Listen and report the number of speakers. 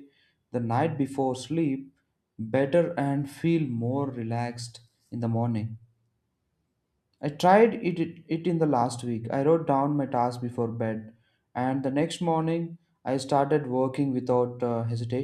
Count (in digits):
1